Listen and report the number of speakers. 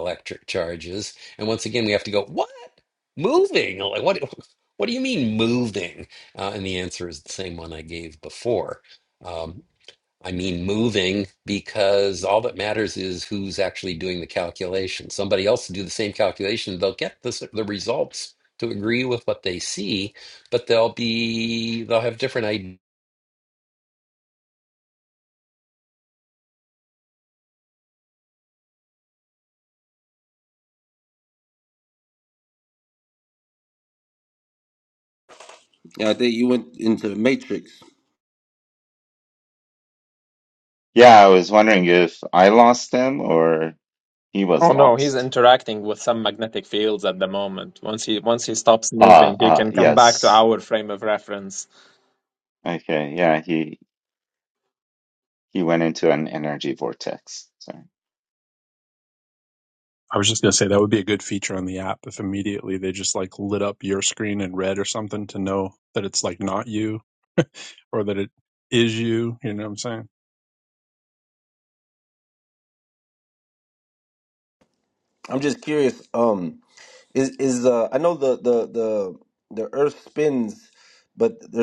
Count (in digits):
5